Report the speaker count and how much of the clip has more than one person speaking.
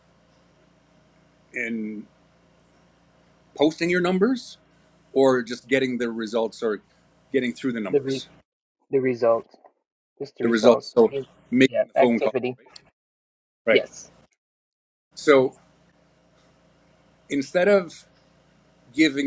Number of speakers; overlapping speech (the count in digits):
2, about 7%